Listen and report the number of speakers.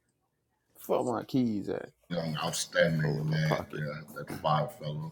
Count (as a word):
two